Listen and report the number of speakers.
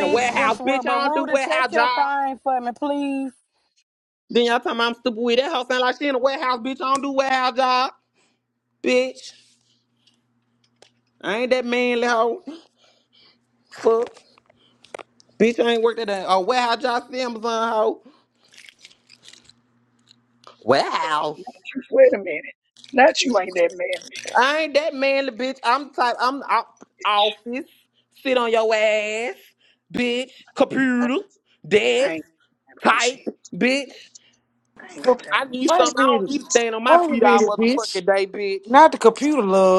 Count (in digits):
4